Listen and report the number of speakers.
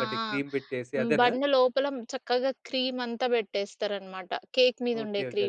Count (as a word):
two